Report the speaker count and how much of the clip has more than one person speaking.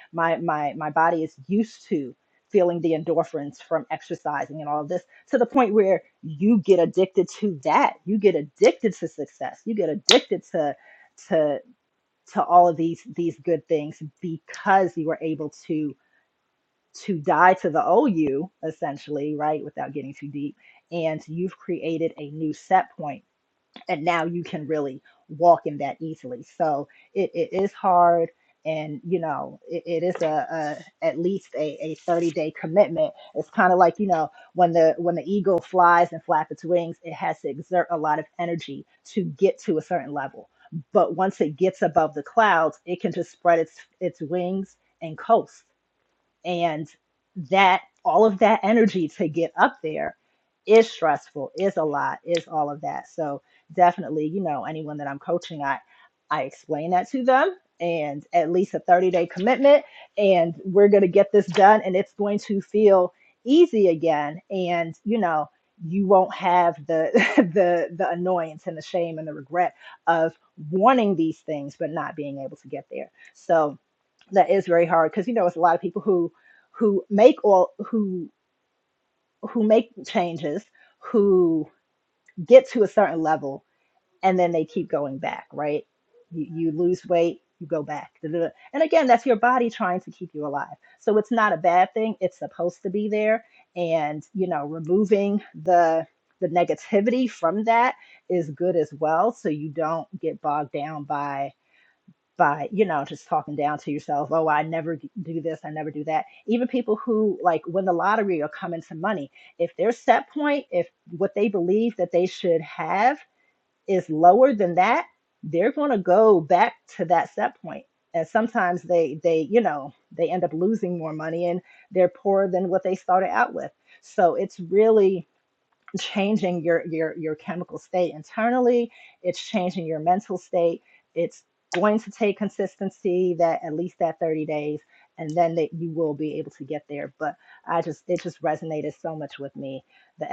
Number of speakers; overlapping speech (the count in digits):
1, no overlap